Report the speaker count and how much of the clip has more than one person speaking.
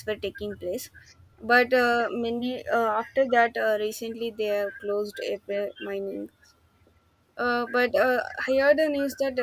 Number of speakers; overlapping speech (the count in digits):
1, no overlap